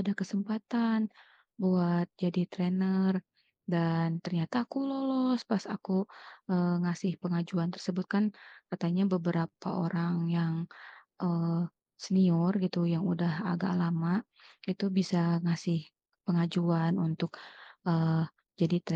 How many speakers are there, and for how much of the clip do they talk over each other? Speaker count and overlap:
one, no overlap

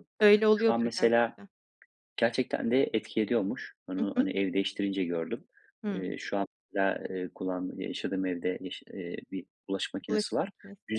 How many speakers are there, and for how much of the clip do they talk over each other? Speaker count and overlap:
two, about 16%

